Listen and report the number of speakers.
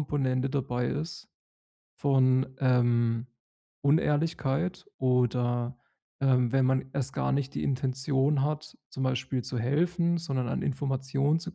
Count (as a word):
one